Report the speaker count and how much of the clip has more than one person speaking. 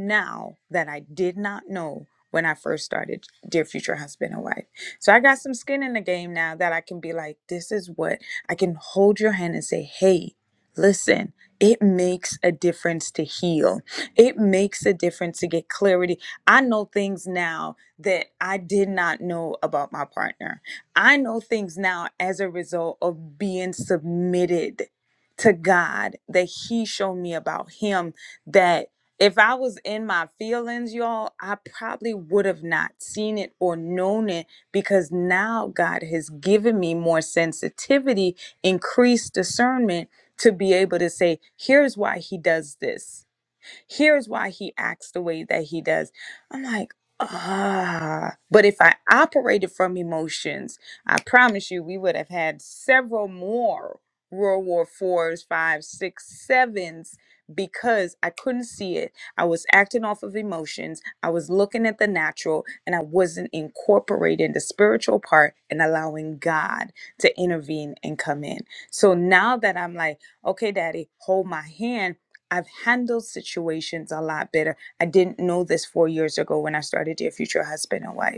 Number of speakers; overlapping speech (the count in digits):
1, no overlap